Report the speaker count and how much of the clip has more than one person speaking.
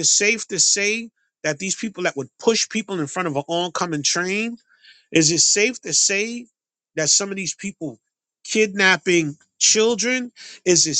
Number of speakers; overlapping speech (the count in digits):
1, no overlap